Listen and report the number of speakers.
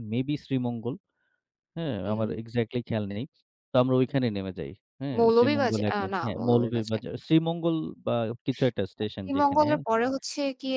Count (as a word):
two